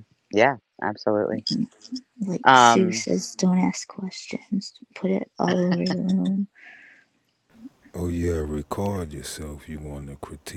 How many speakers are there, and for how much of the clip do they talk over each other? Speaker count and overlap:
three, about 5%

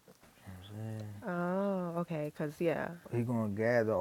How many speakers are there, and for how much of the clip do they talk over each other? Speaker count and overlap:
two, no overlap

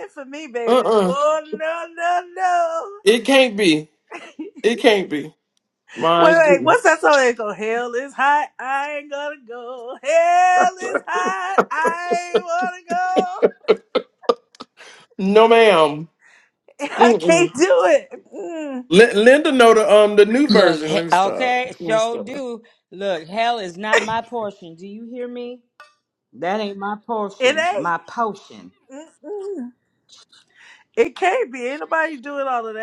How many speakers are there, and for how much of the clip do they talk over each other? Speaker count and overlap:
three, about 12%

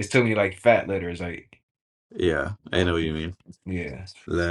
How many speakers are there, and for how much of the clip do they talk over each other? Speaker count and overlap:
two, about 4%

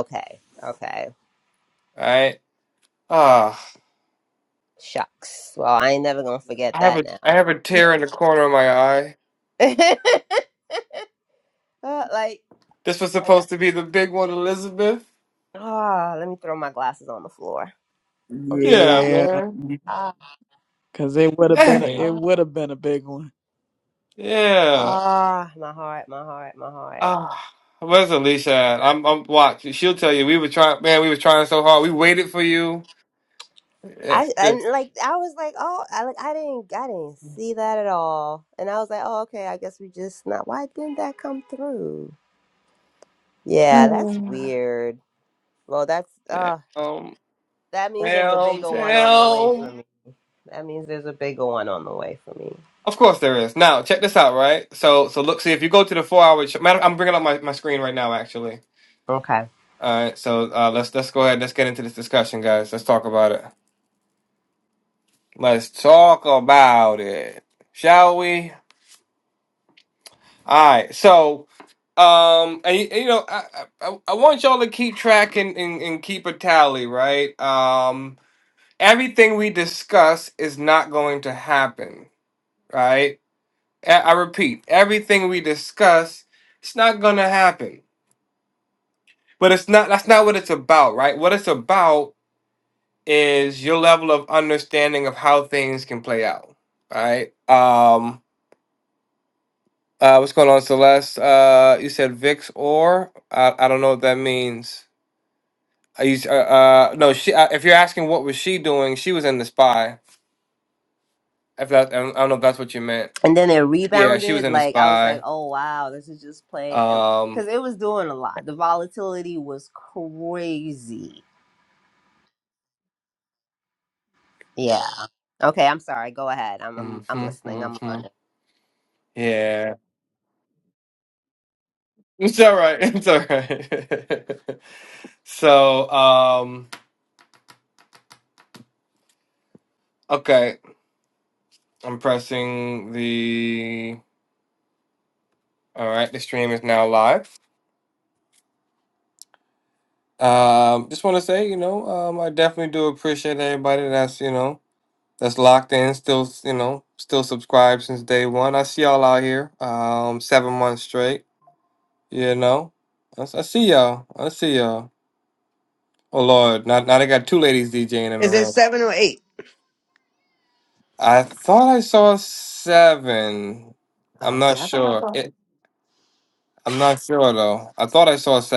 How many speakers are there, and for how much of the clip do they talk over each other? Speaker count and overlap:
four, about 5%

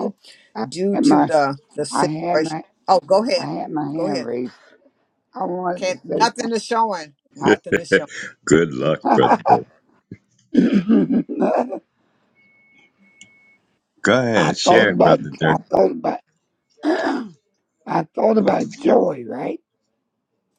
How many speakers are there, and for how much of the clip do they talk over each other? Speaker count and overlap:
three, about 20%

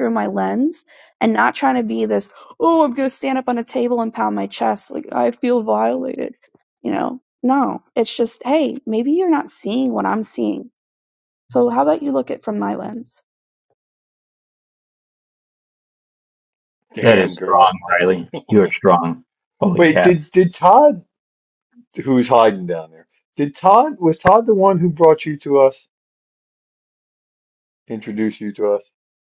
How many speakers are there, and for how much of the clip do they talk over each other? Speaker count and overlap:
three, about 4%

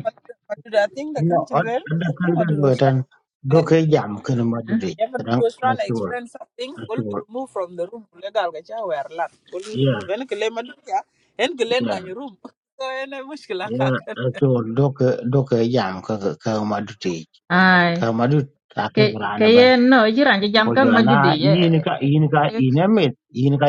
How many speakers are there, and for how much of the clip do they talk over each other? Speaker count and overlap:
three, about 24%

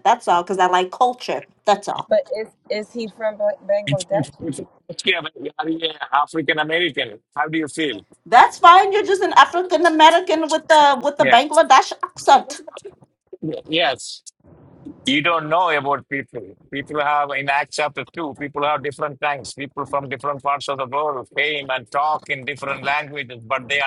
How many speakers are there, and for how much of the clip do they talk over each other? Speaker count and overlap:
three, about 3%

